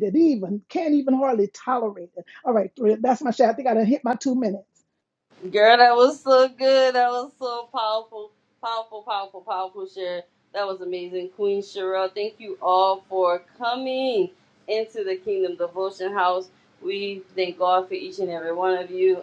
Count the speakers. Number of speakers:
two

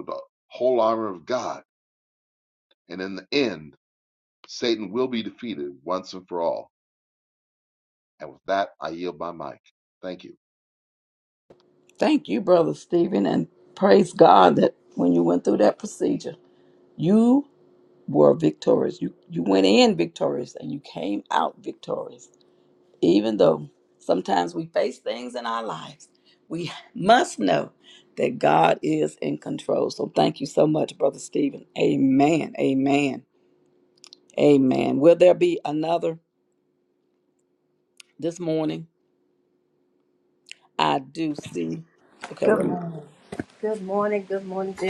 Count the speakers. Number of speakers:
three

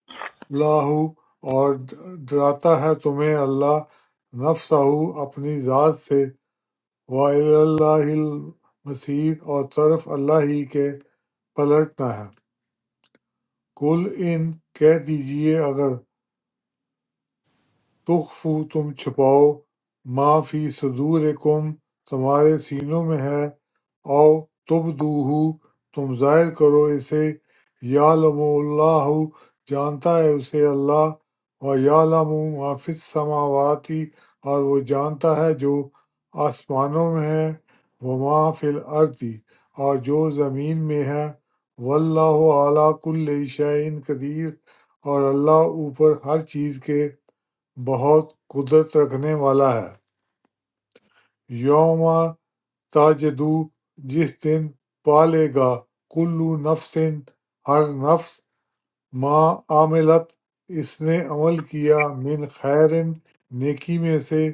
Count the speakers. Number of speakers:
one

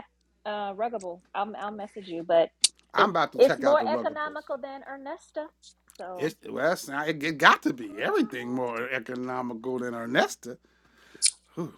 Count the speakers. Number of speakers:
two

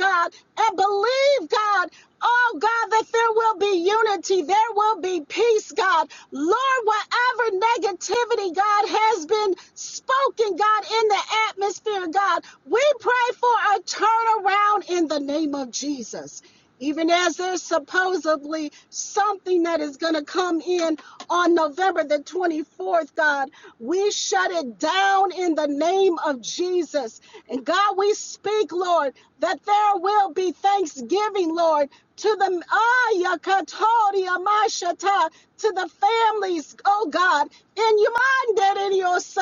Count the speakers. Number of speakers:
one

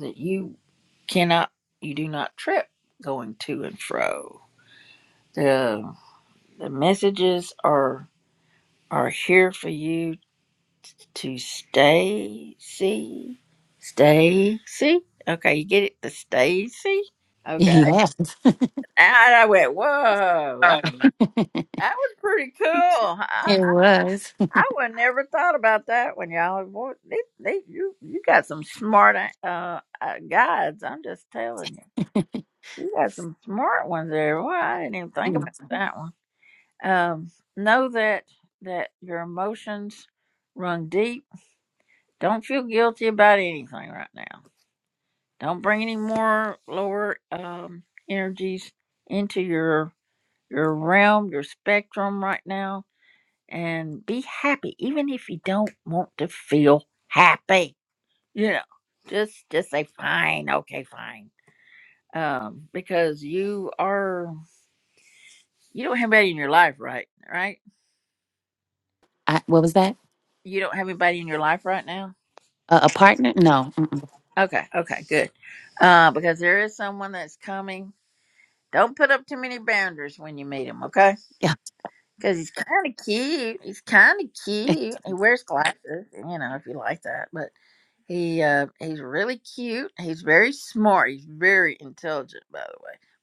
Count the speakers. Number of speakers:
two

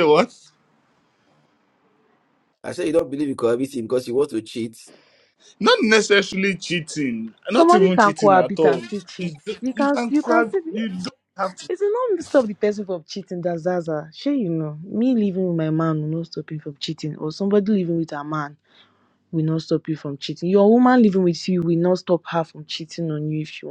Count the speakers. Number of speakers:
three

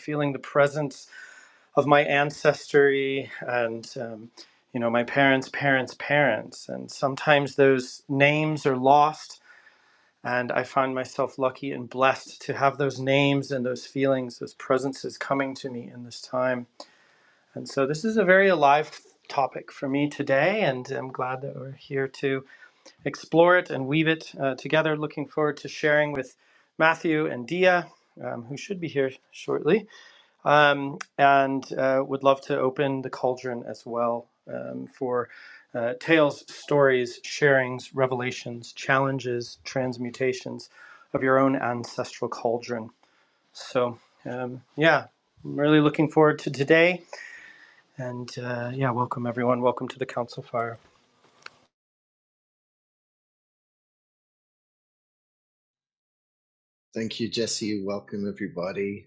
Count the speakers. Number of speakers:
two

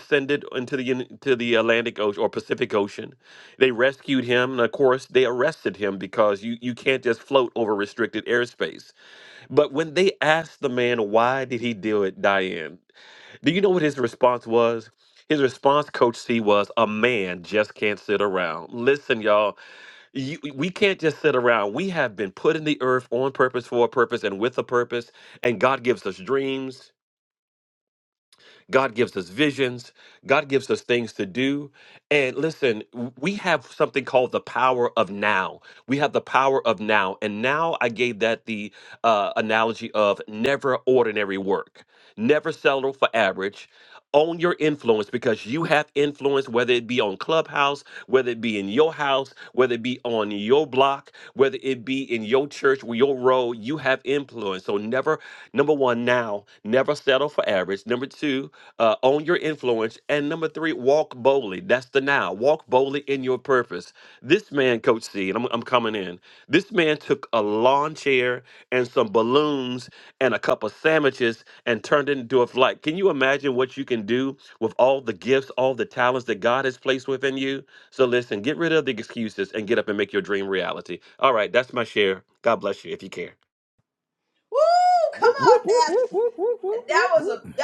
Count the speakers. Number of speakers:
three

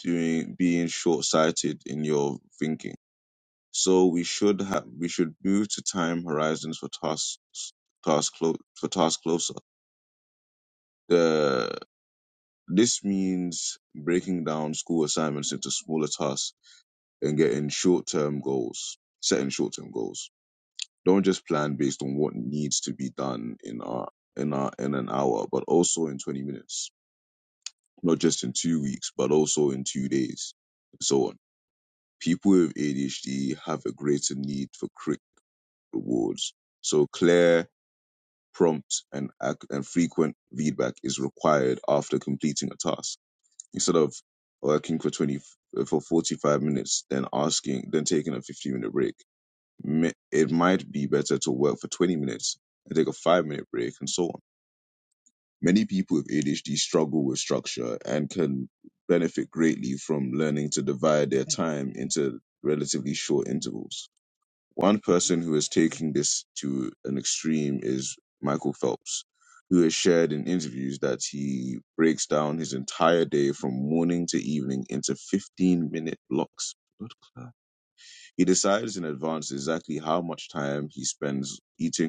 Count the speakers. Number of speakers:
one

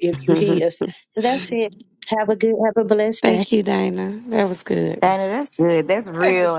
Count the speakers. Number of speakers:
three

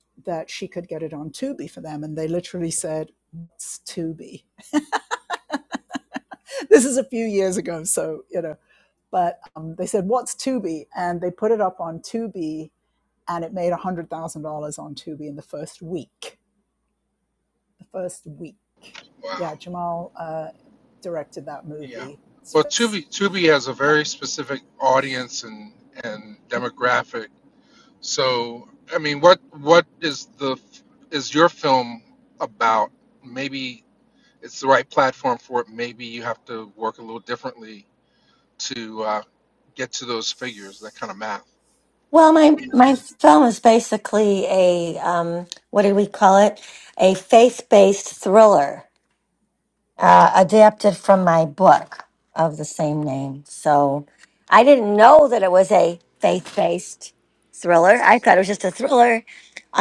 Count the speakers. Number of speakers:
three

